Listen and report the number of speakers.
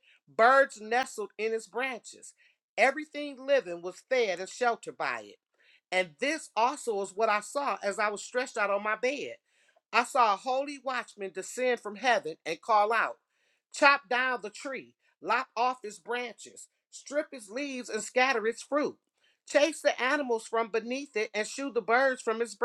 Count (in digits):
1